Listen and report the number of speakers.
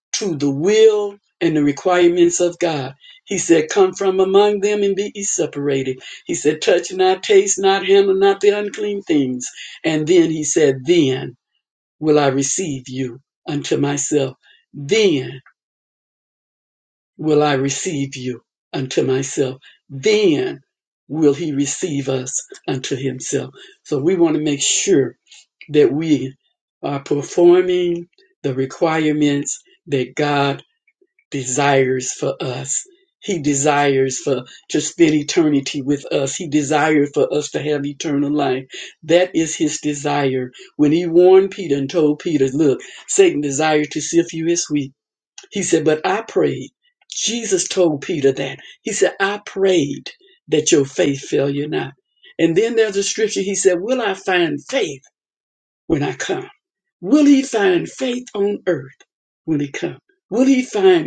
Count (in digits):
1